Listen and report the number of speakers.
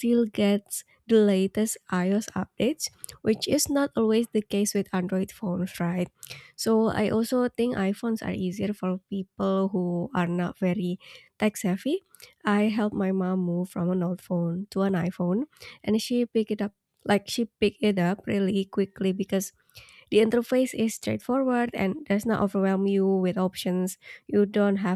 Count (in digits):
1